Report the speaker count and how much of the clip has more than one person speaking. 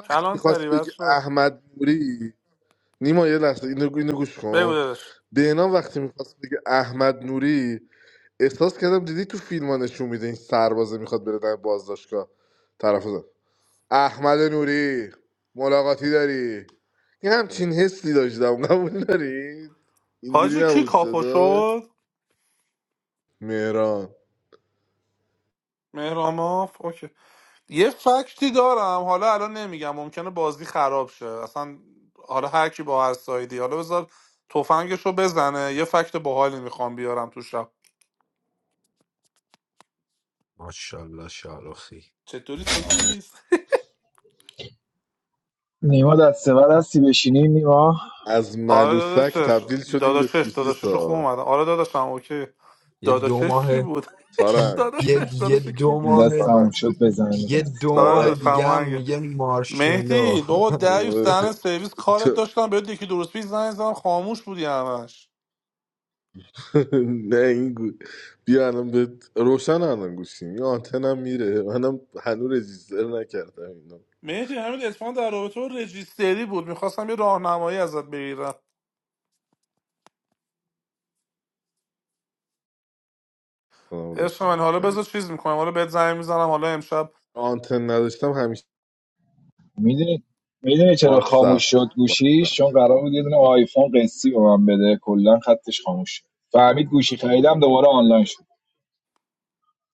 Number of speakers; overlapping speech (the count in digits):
4, about 11%